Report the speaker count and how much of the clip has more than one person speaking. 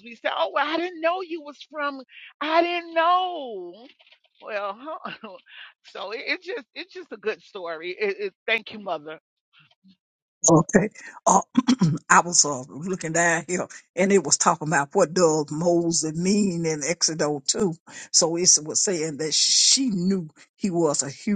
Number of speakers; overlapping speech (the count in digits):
2, no overlap